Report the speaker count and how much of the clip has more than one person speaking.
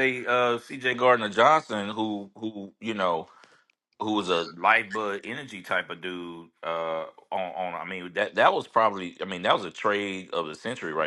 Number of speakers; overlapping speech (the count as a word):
one, no overlap